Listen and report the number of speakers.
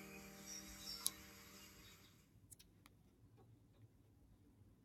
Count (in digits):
0